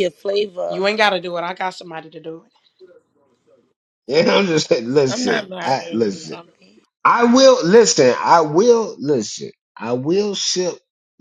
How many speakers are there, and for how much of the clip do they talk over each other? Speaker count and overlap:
3, about 12%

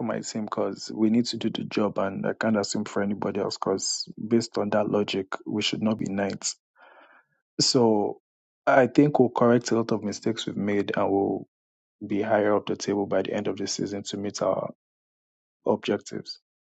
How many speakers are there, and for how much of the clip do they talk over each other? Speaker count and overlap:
1, no overlap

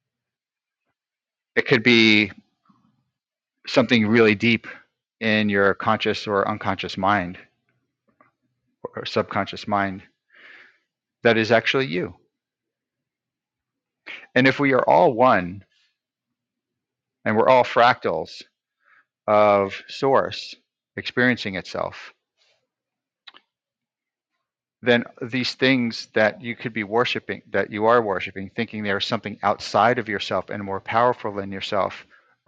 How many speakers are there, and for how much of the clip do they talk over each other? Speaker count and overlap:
1, no overlap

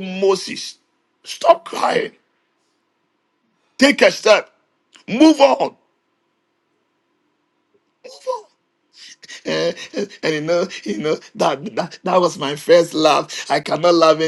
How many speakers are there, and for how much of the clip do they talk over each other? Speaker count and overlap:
1, no overlap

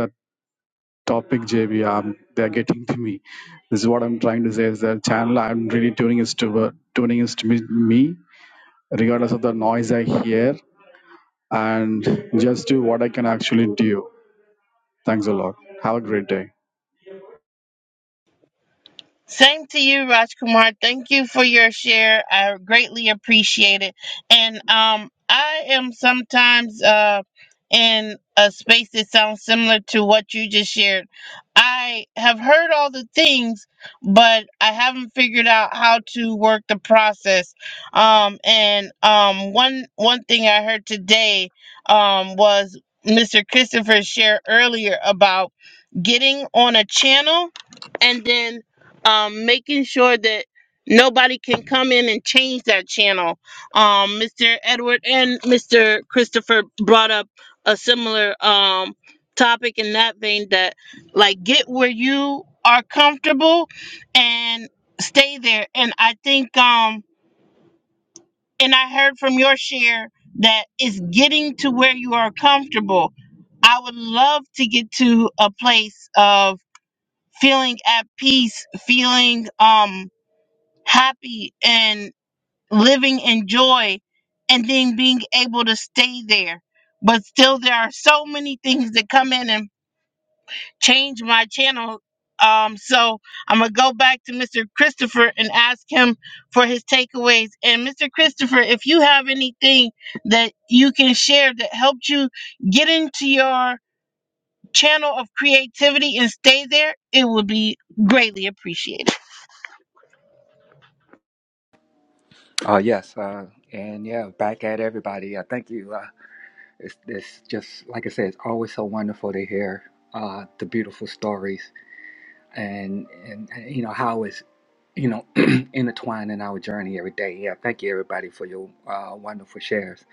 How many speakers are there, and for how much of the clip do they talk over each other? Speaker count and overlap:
3, no overlap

